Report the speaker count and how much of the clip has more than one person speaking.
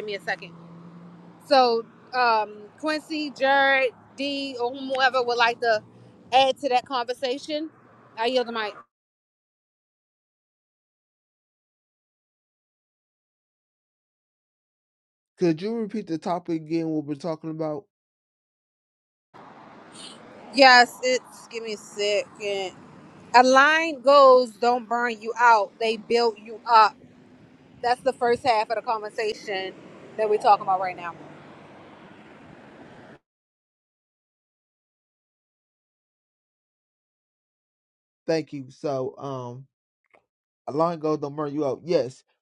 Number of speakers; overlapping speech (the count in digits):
2, no overlap